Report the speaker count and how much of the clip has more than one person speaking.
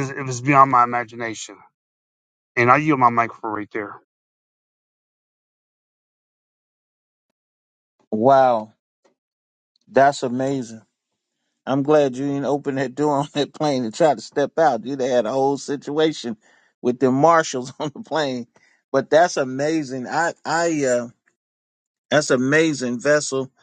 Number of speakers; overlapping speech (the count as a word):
two, no overlap